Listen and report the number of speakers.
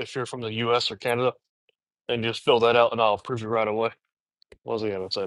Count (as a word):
one